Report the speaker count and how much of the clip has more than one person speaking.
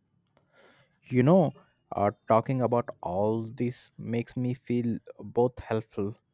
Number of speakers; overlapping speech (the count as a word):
one, no overlap